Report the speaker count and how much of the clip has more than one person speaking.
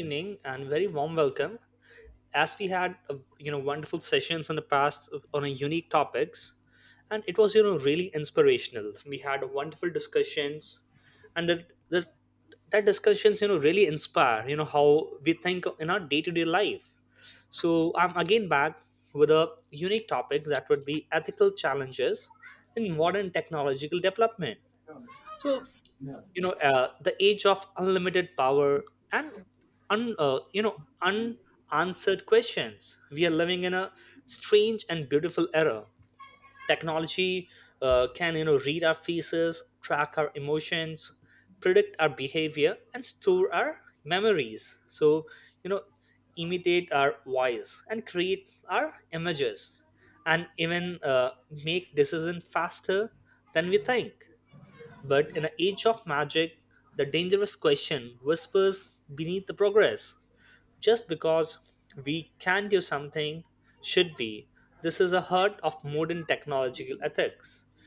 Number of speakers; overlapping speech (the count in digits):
1, no overlap